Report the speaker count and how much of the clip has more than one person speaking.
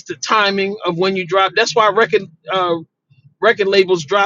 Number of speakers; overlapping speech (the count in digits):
1, no overlap